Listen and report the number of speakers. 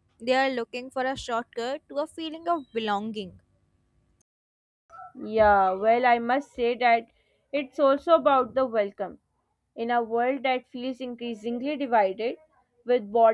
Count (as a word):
two